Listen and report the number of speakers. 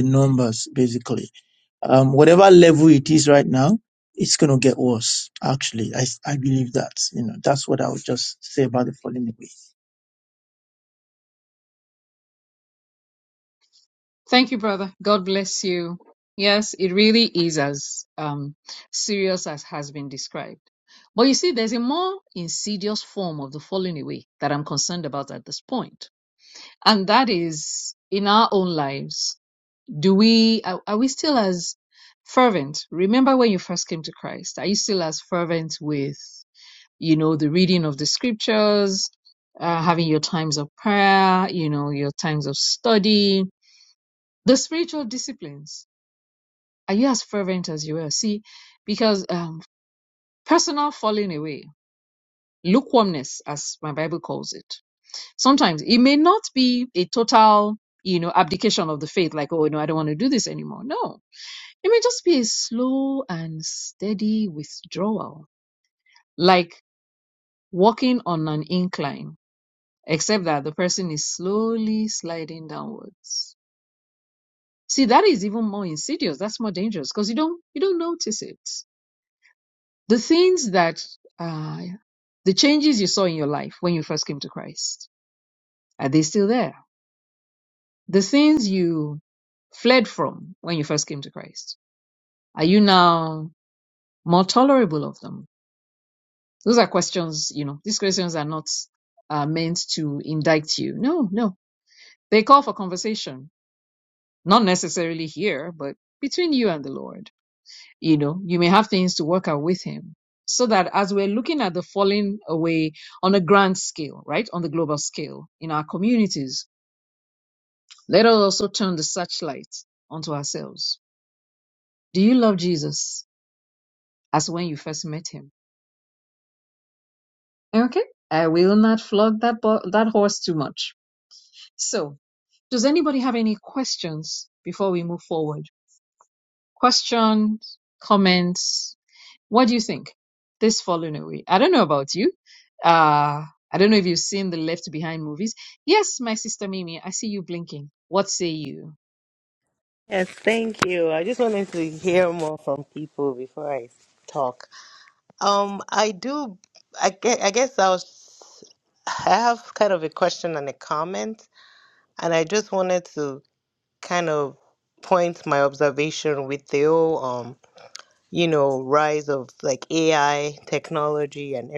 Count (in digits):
3